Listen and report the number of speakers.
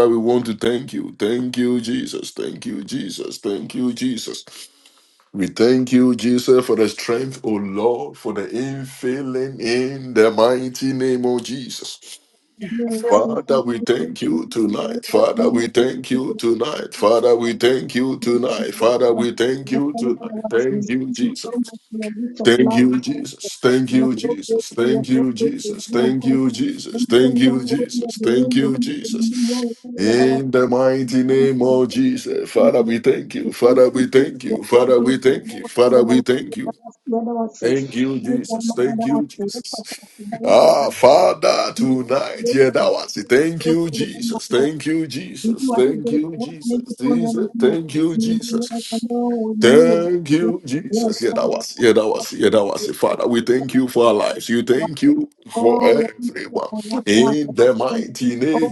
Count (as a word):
two